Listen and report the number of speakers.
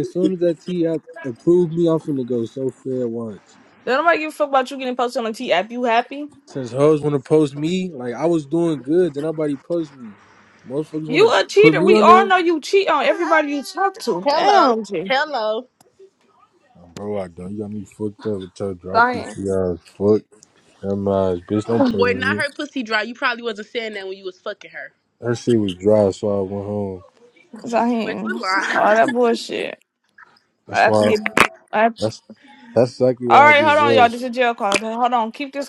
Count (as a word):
three